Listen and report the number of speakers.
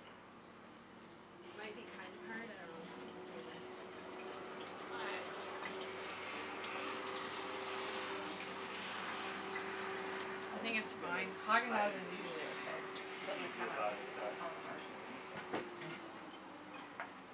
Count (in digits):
4